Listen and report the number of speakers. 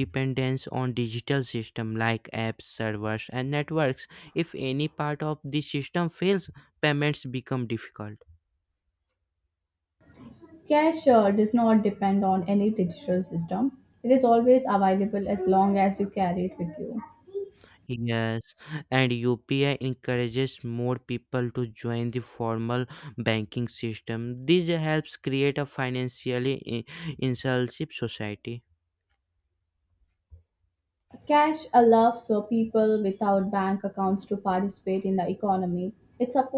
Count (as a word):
two